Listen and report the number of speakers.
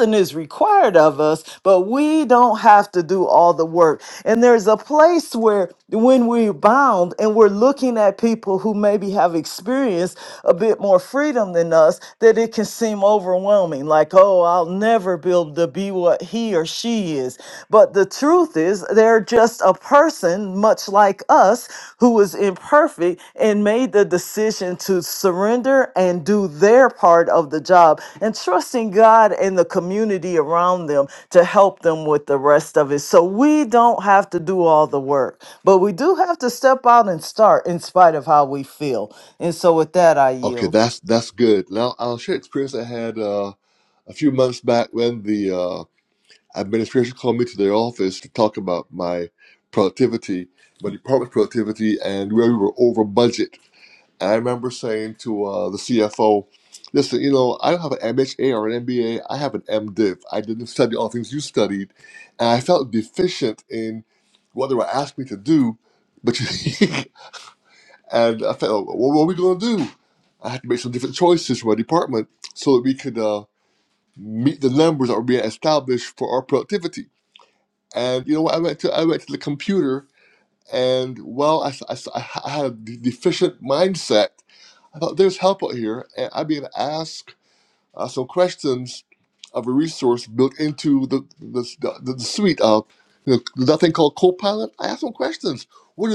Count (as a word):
two